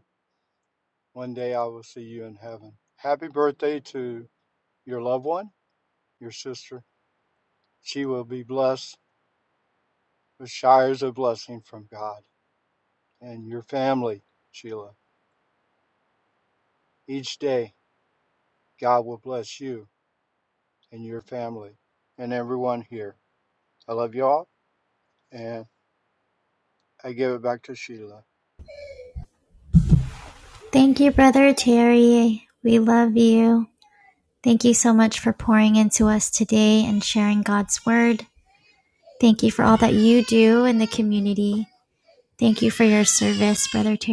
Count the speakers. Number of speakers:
2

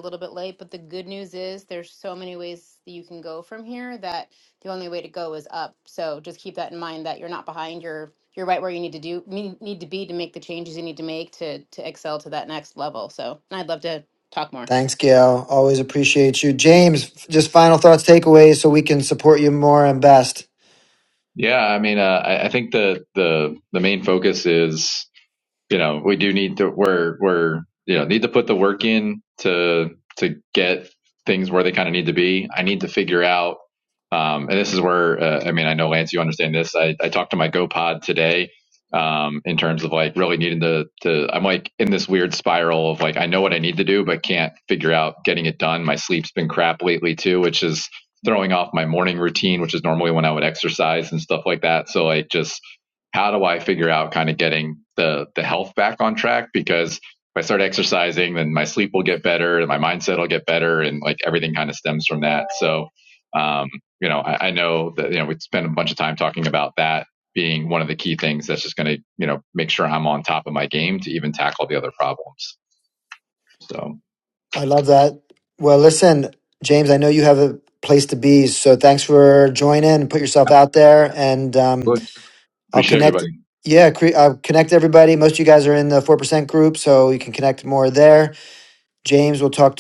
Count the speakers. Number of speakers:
3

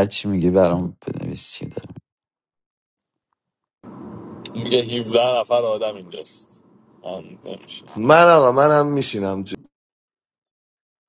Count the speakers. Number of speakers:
3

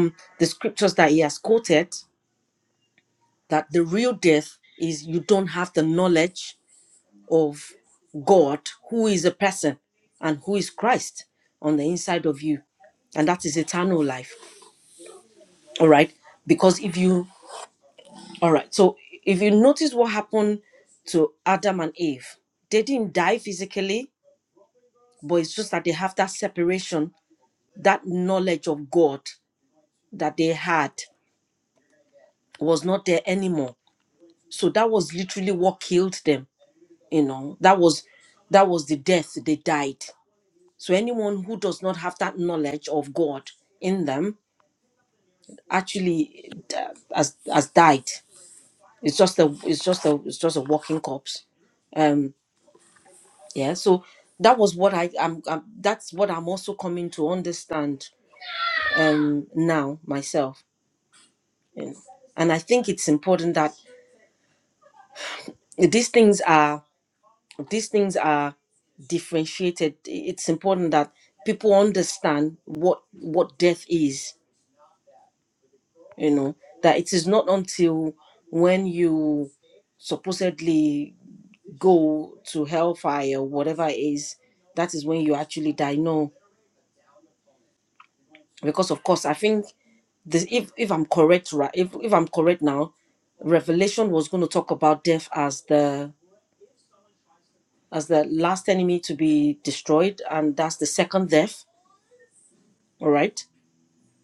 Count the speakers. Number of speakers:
1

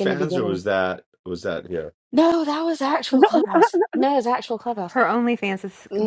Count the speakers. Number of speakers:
3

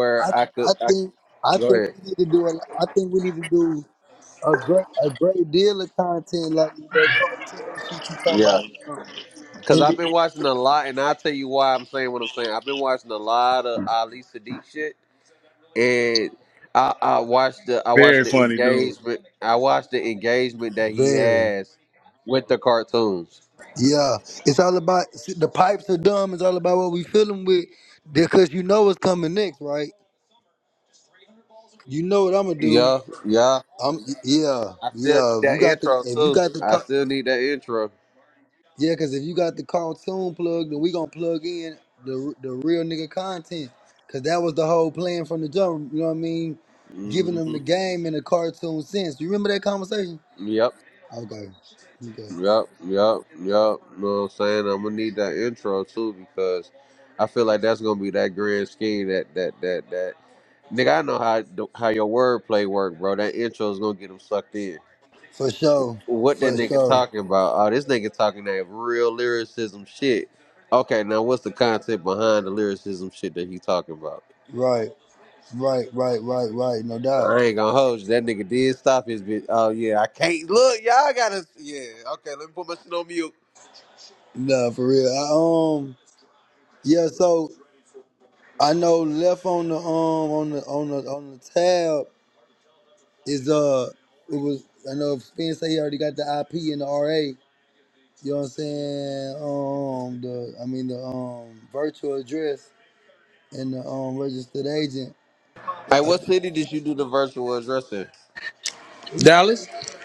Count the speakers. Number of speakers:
3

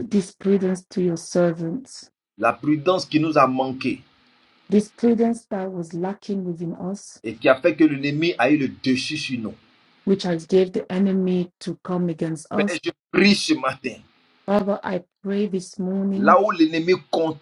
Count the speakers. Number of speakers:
2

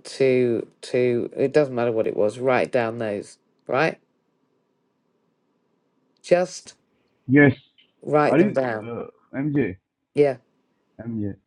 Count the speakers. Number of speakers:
2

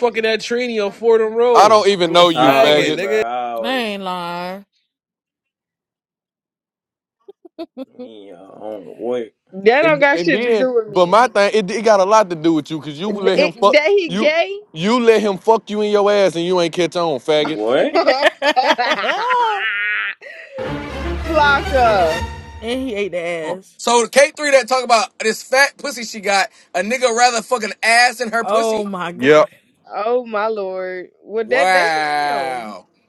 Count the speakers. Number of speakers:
6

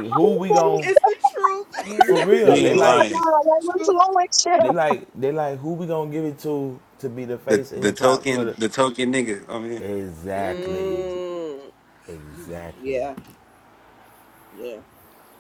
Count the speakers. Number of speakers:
4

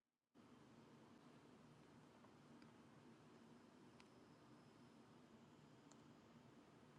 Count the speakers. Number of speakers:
0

